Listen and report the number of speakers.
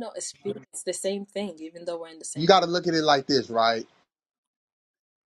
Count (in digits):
2